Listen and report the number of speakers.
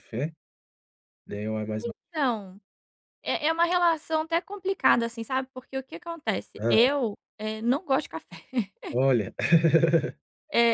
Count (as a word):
two